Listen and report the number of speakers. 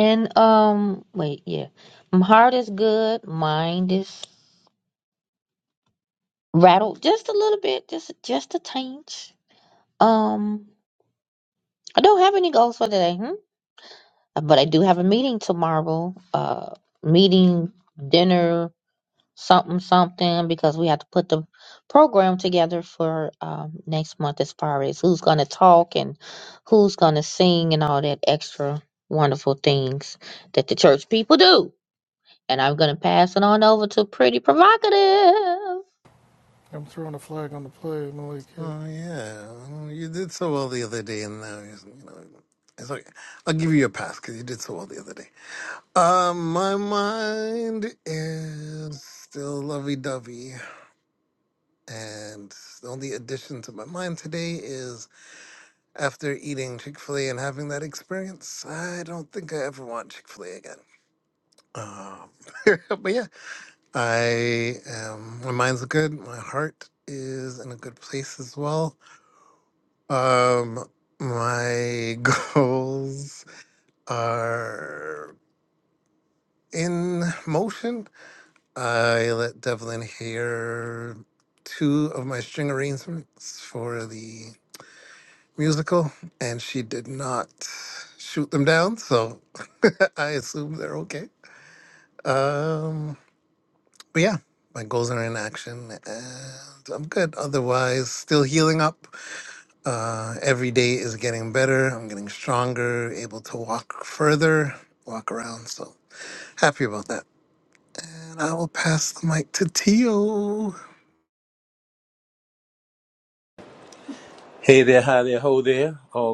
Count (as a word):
four